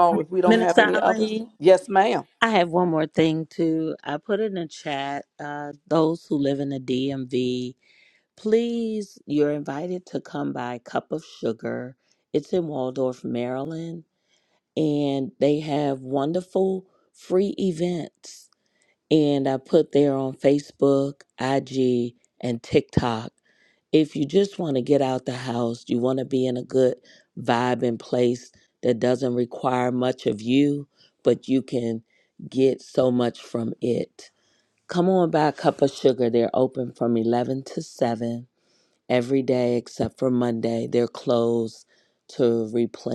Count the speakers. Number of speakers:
2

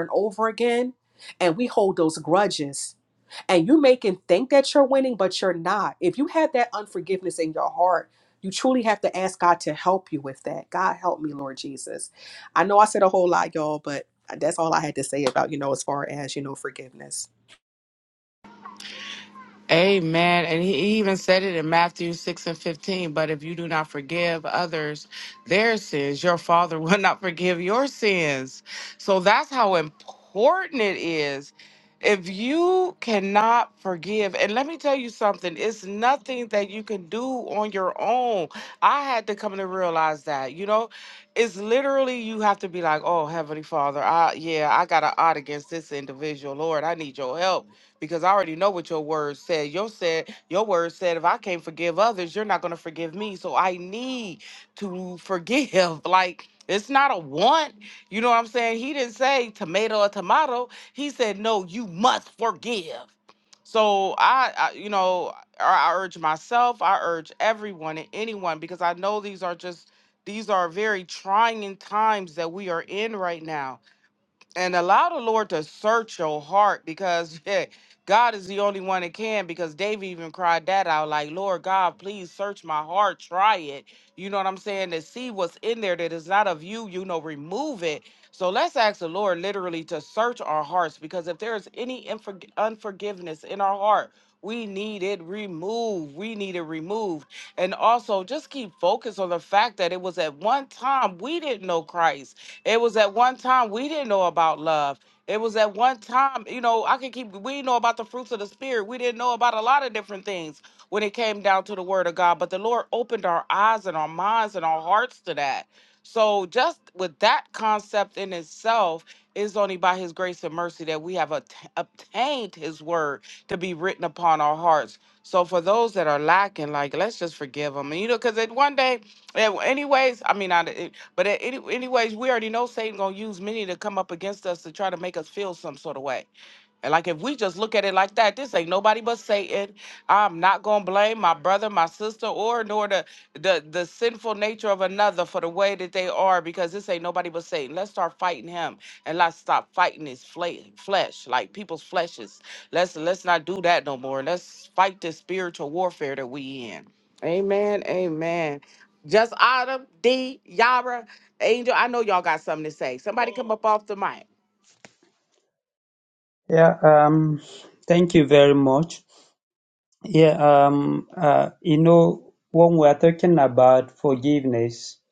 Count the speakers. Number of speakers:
3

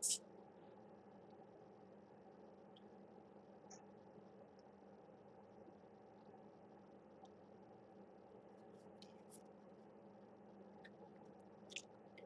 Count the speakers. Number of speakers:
0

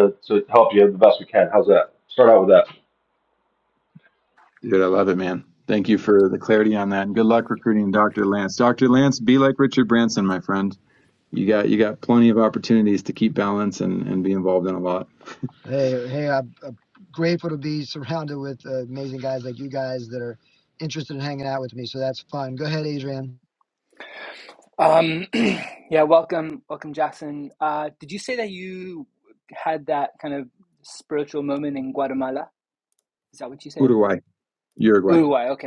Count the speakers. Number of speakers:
4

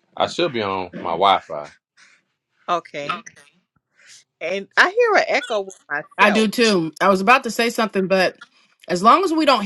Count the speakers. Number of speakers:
3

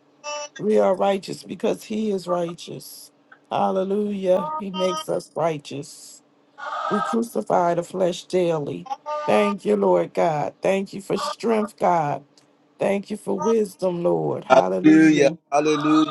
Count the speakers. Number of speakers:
2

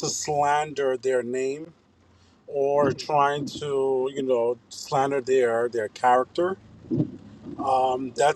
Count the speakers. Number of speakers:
1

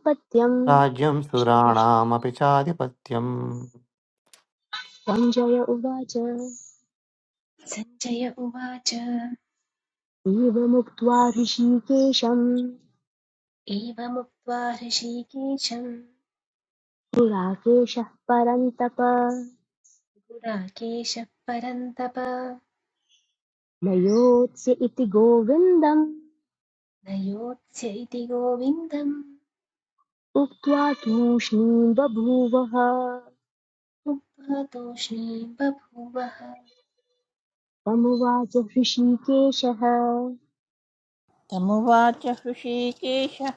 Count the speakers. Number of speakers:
4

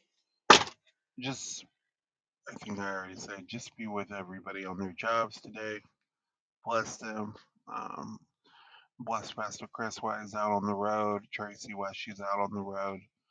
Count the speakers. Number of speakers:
1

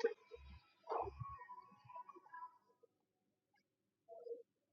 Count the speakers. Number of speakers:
0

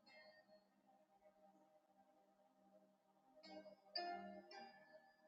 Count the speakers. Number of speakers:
0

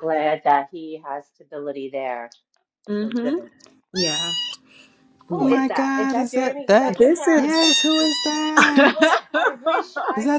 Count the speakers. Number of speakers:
3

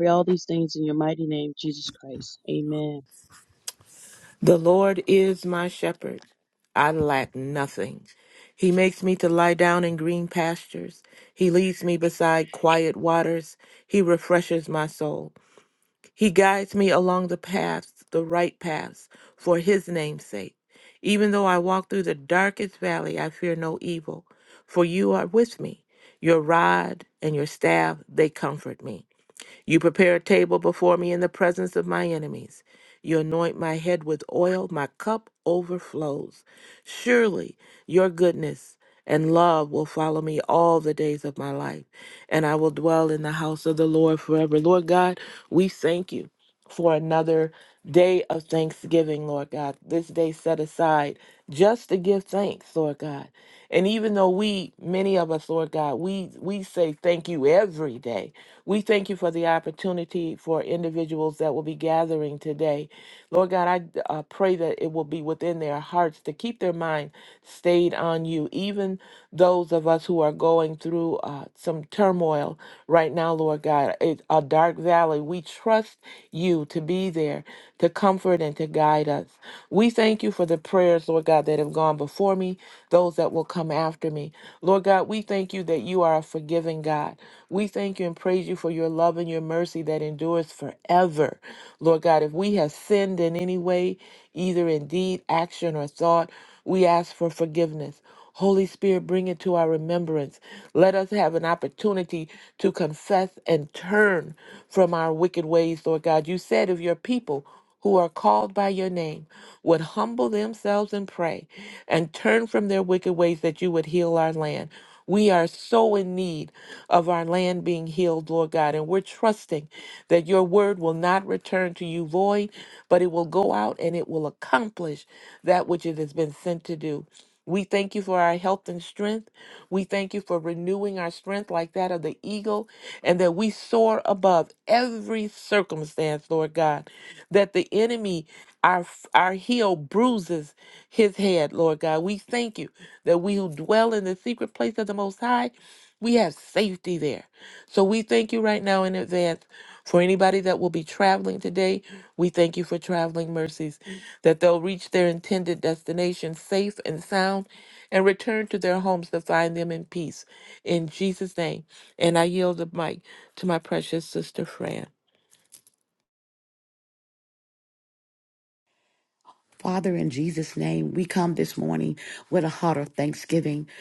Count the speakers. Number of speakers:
3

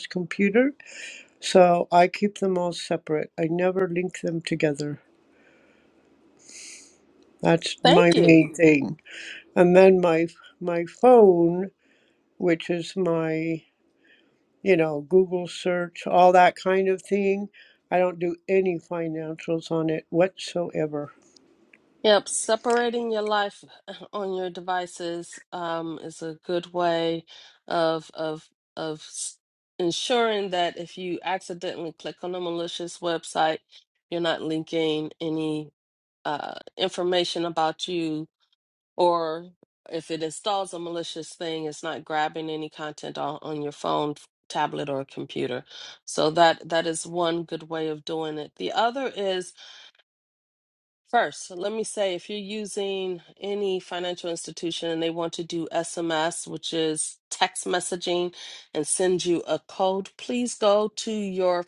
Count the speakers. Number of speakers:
2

